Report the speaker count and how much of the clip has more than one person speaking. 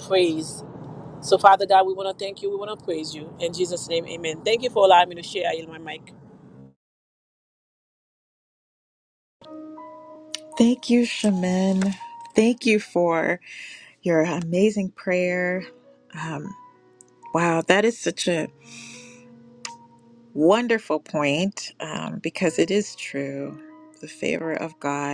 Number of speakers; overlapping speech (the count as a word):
two, no overlap